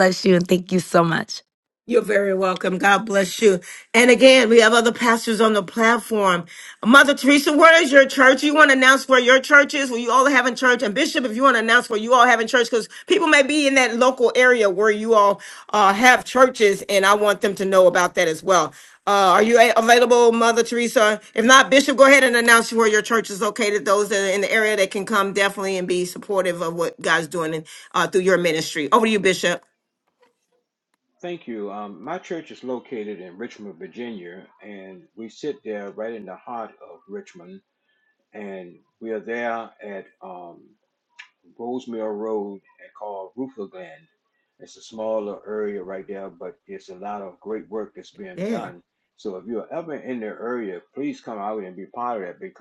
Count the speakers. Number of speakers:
three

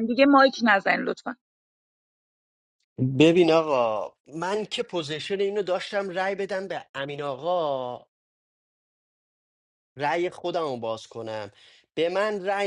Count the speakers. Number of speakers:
two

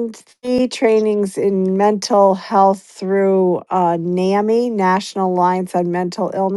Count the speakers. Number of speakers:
one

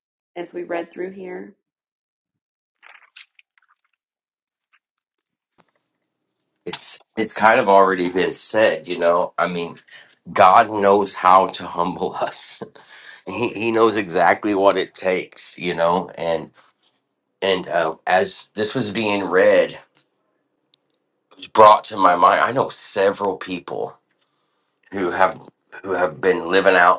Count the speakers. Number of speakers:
two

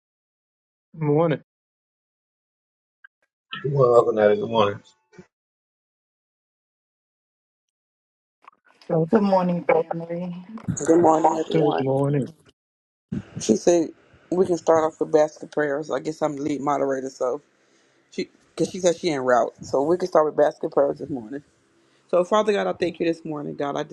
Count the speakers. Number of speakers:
four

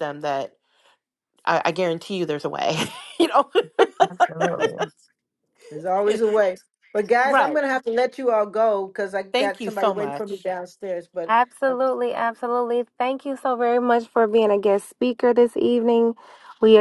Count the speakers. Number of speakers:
three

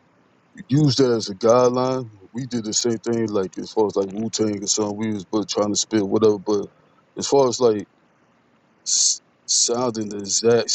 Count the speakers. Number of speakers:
one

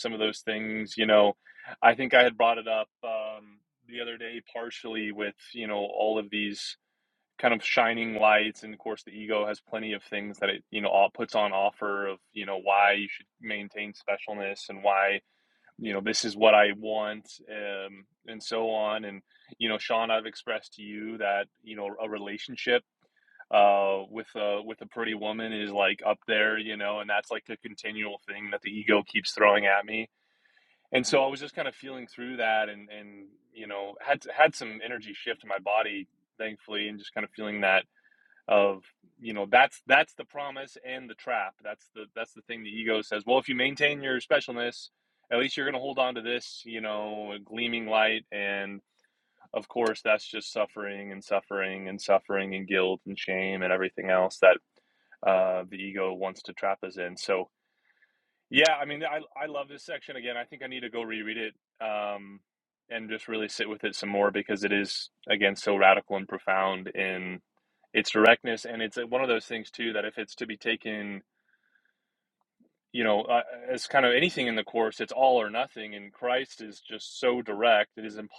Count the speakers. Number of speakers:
one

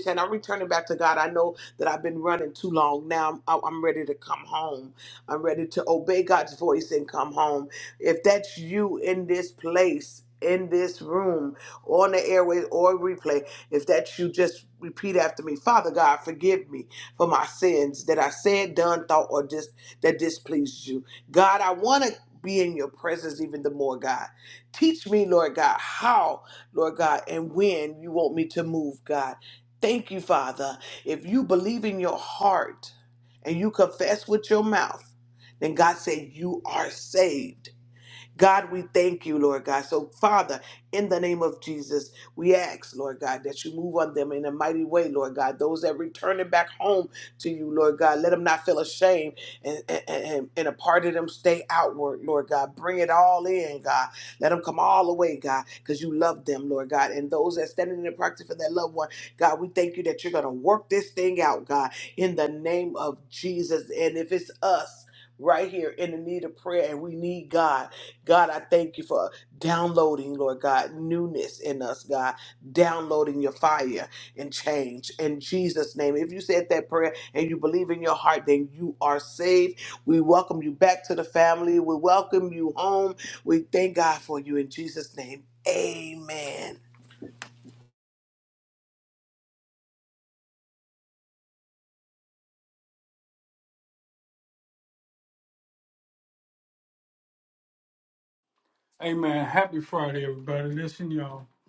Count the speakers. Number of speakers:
two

